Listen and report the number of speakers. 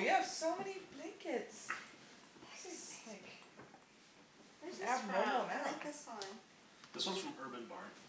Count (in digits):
3